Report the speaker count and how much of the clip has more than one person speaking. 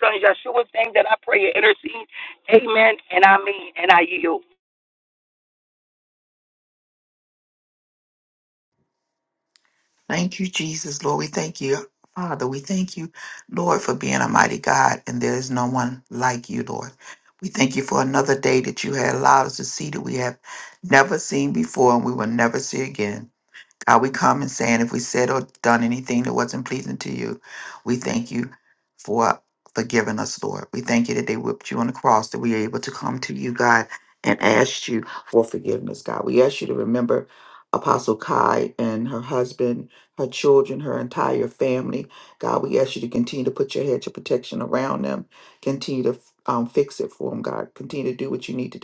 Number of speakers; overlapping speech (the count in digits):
2, no overlap